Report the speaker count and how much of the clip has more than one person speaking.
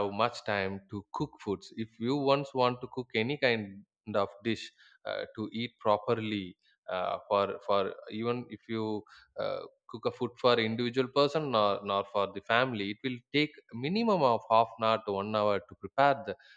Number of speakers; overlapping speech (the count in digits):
1, no overlap